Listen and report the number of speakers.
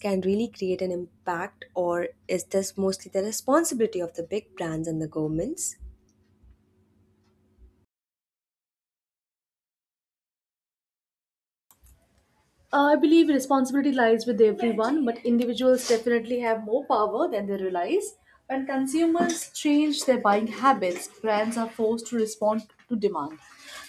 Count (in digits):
2